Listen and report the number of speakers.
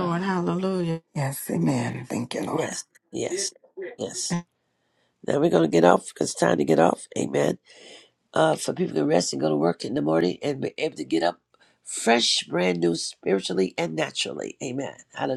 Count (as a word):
three